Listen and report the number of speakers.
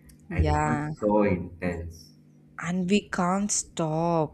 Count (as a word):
two